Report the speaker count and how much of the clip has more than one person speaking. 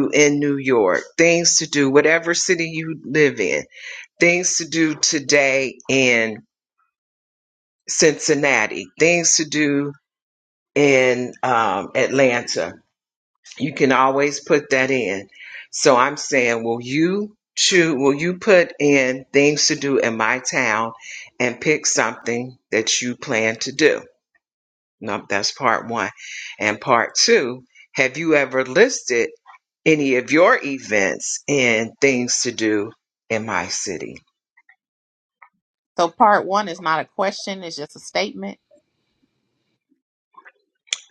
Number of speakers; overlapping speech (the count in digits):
2, no overlap